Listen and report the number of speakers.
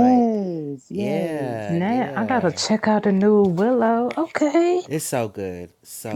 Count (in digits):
3